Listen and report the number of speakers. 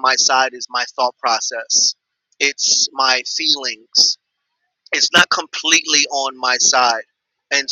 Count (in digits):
1